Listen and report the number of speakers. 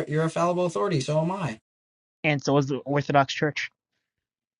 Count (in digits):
2